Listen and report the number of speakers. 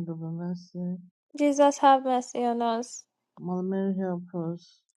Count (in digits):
2